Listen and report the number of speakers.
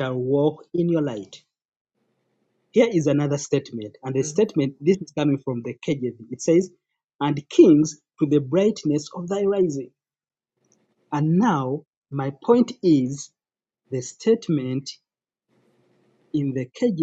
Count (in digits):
1